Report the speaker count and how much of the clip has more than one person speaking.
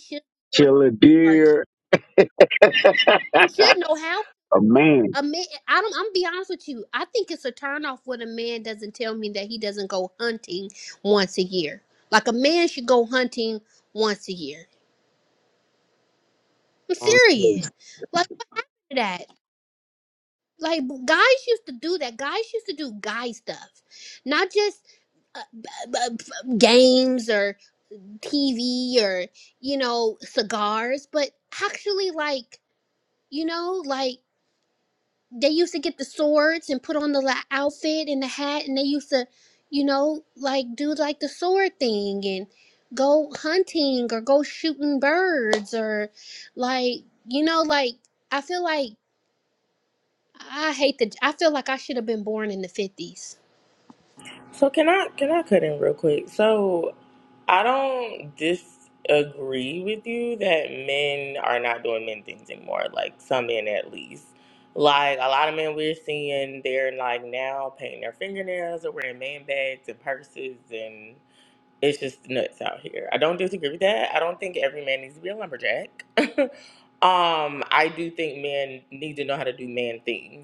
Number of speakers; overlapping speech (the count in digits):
3, about 1%